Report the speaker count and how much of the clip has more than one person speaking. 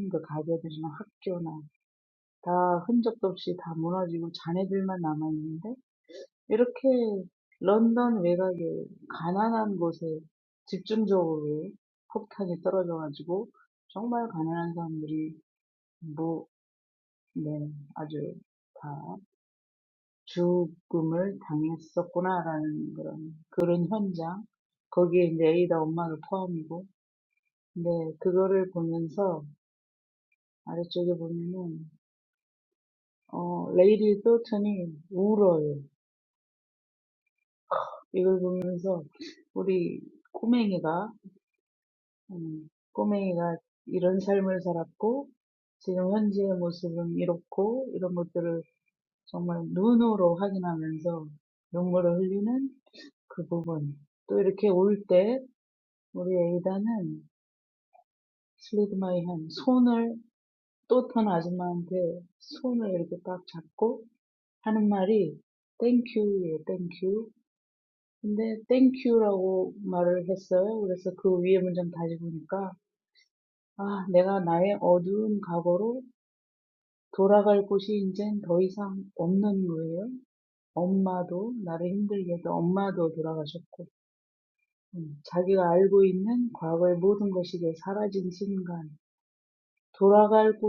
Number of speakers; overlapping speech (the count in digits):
1, no overlap